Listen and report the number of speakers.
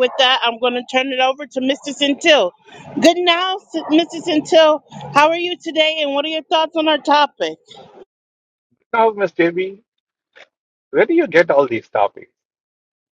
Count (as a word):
two